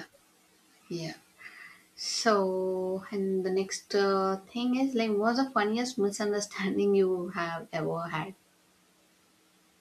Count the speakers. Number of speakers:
one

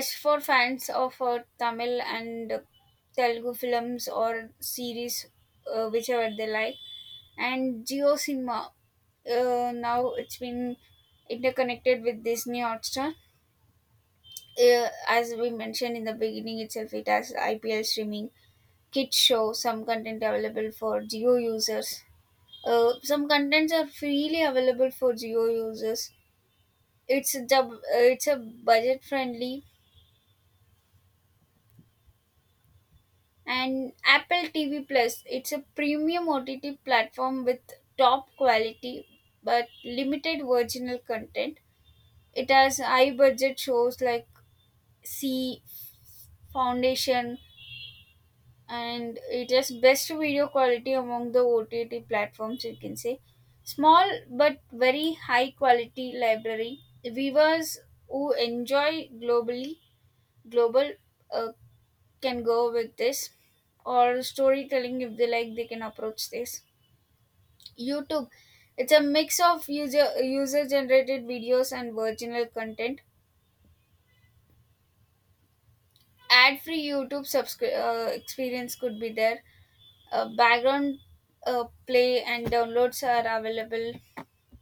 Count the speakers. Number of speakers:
one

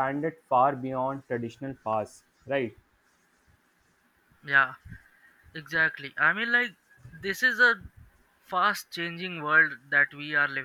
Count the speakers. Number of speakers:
two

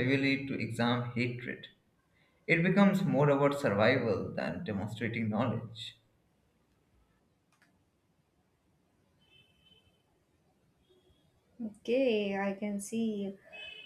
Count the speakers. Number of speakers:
two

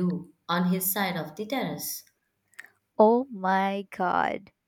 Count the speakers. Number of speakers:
two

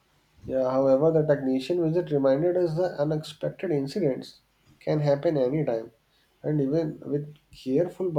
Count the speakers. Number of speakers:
one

